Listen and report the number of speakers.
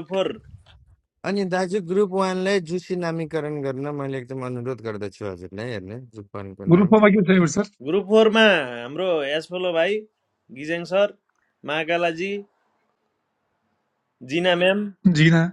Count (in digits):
3